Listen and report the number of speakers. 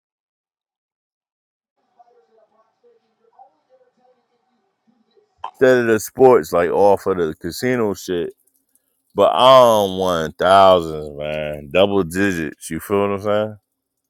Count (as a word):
one